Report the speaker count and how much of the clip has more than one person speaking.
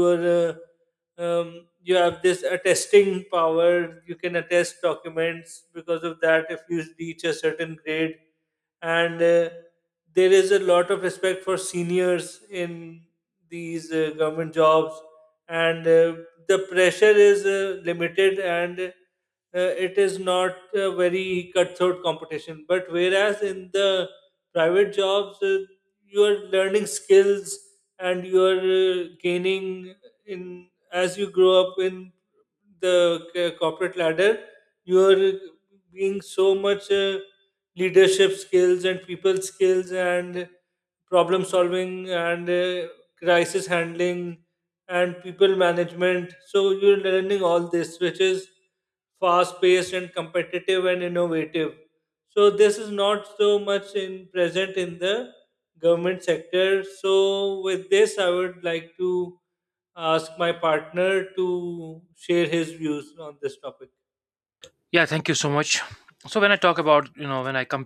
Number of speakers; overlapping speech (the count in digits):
2, no overlap